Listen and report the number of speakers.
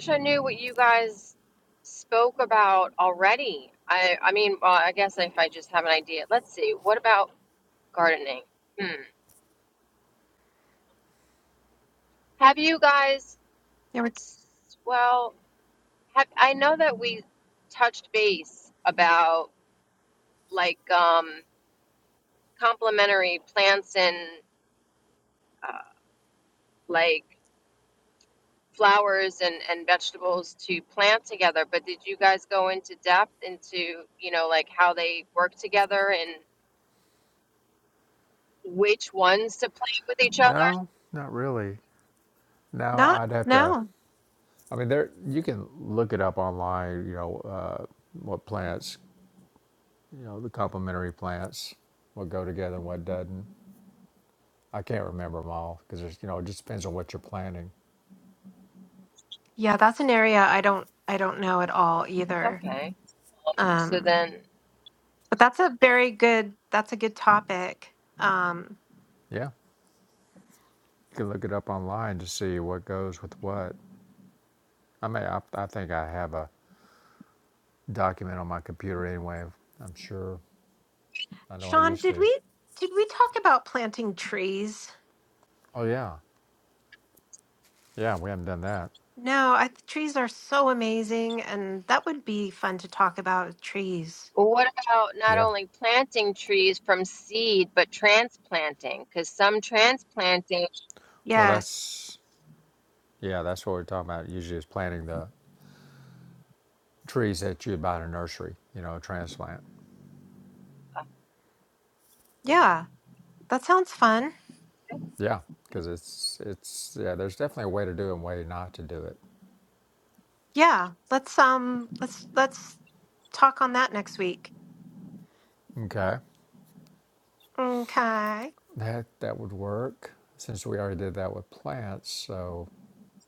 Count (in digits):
3